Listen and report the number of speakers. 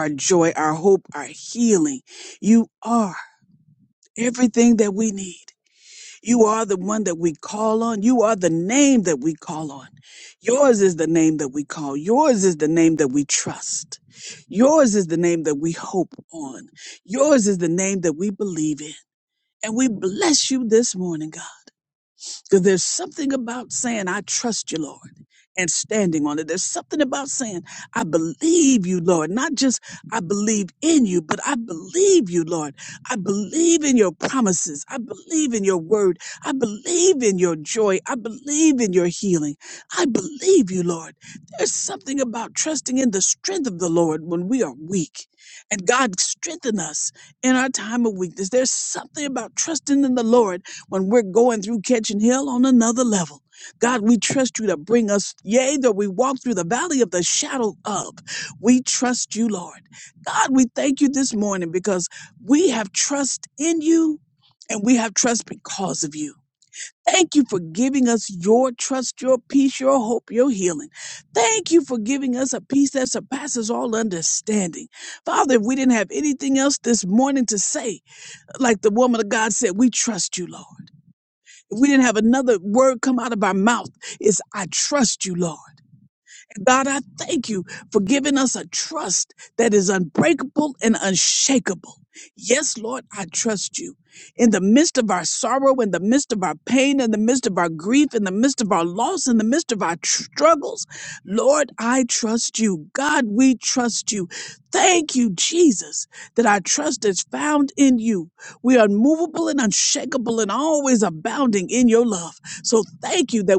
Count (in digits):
1